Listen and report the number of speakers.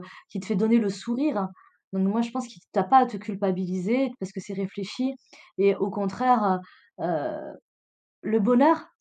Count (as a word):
one